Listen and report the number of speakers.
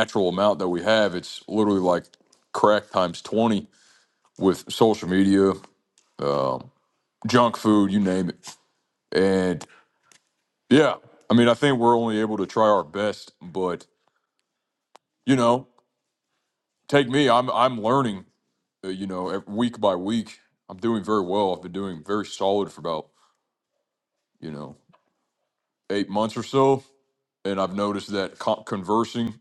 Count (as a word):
one